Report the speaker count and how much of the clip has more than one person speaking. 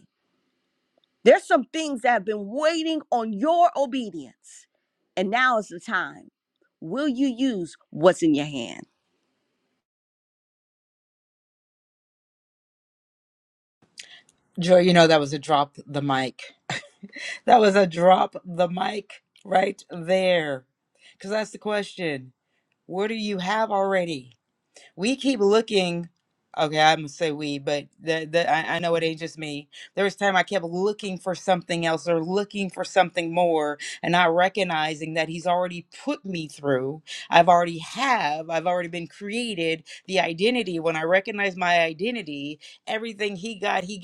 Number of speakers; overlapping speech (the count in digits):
2, no overlap